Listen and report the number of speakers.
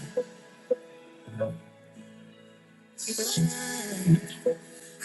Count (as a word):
zero